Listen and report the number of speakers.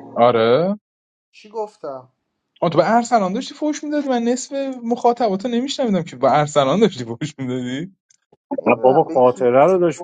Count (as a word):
three